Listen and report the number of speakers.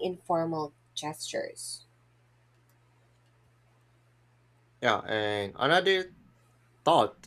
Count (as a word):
two